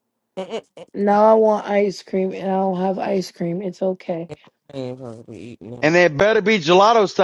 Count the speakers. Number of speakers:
three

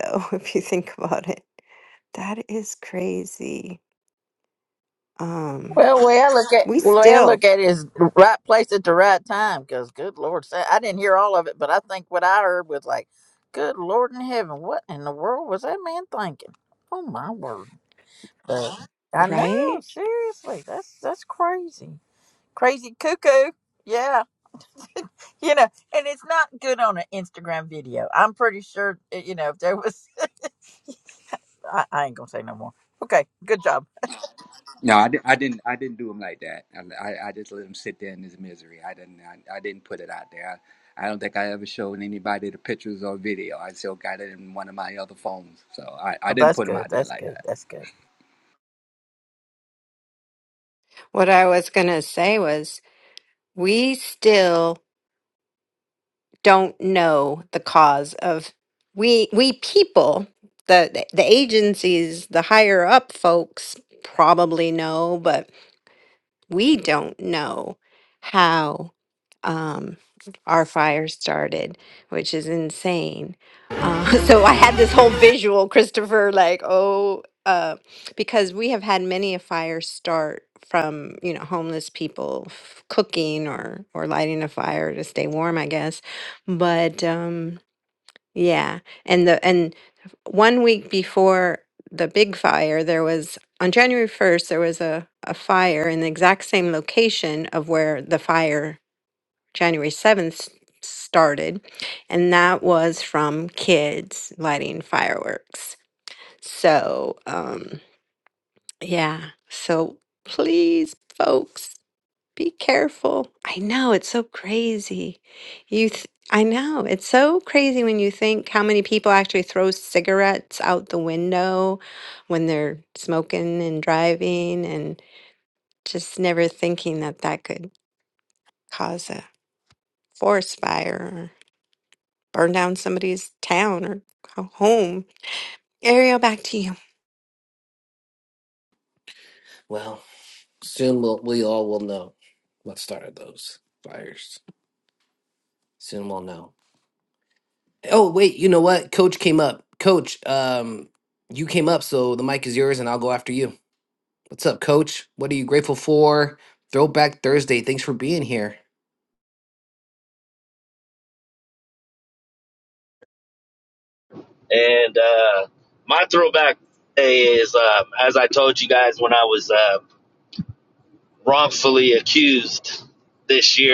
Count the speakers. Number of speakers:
five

